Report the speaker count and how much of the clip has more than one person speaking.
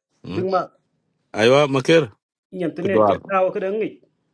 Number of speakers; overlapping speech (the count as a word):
two, about 10%